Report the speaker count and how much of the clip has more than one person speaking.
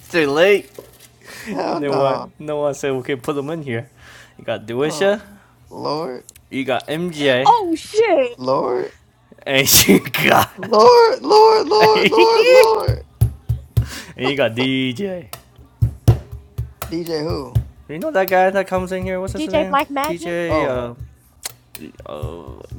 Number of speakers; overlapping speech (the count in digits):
3, about 13%